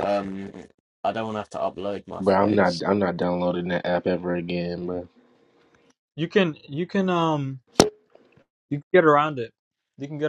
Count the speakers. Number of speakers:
3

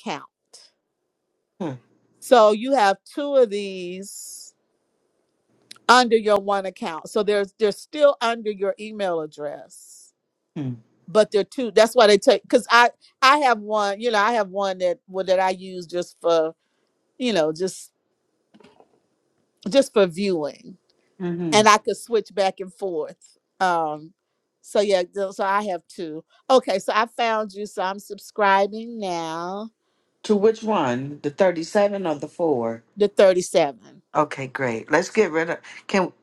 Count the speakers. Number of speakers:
2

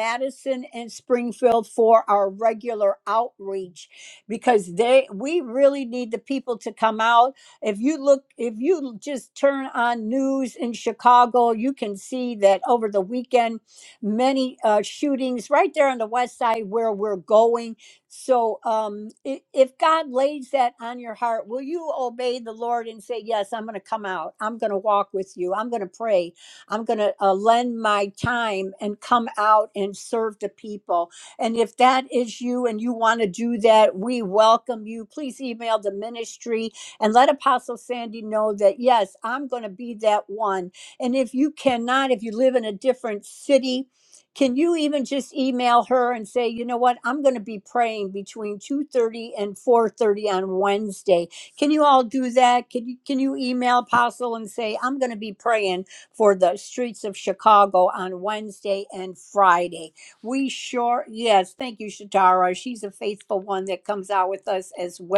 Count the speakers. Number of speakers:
1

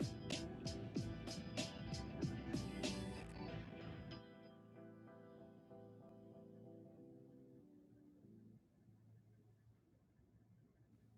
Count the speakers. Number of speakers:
0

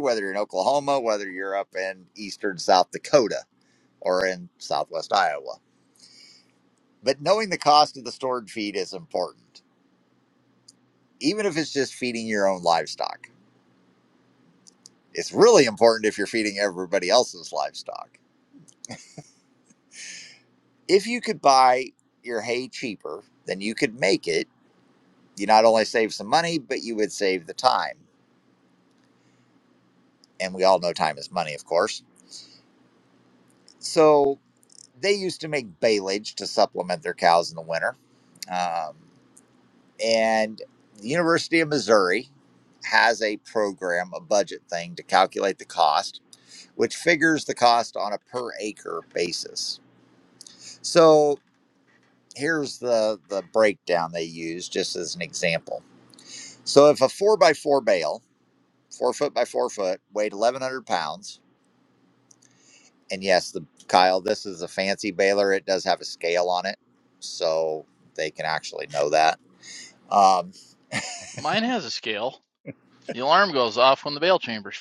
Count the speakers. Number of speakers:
2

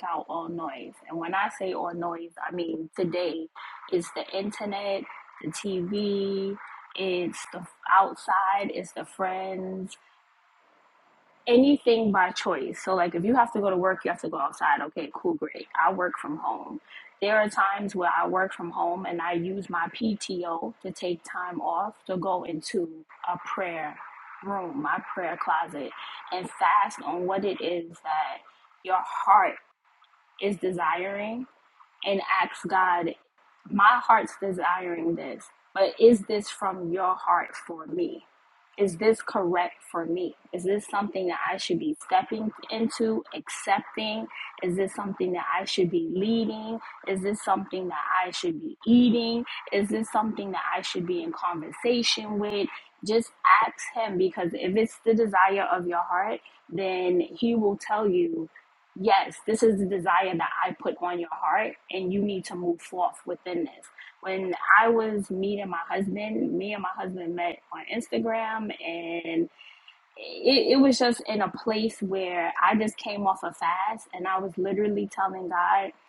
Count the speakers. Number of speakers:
1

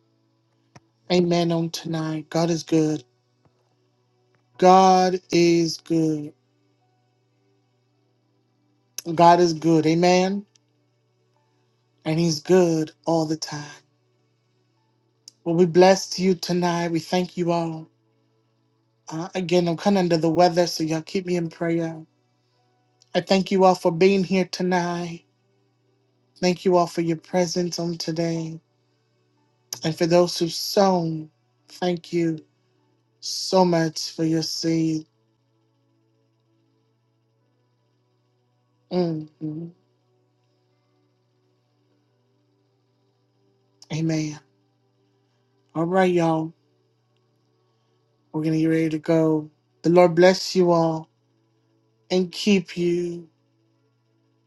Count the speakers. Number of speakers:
1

